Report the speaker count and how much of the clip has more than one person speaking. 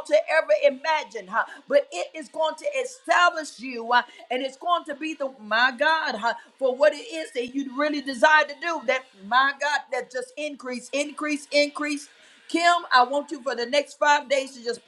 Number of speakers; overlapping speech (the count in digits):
1, no overlap